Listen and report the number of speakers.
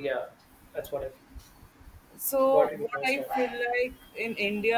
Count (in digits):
2